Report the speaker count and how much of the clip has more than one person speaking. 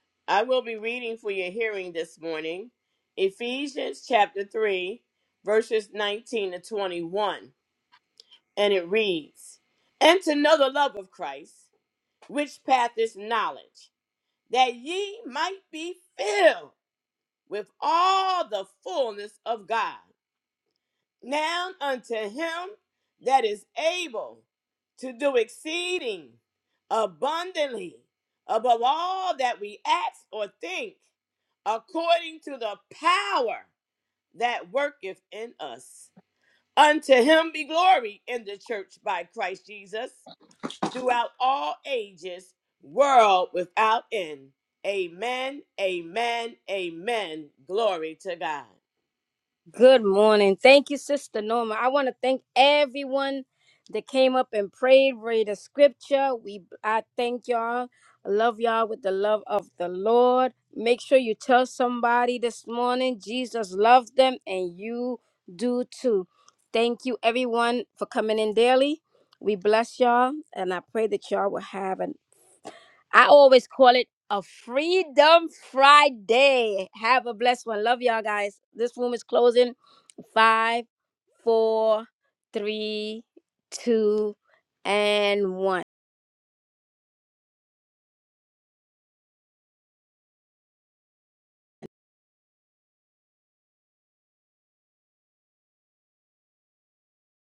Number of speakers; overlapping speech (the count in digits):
2, no overlap